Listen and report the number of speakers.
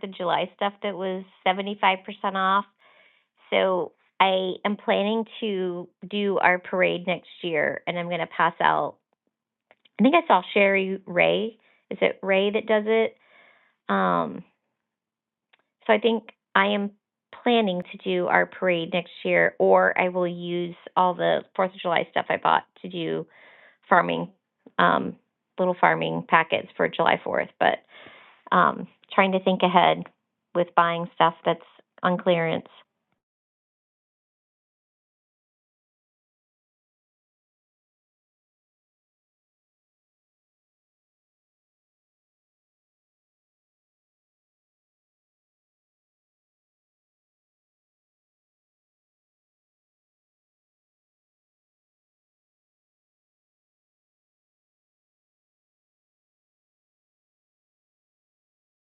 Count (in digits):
1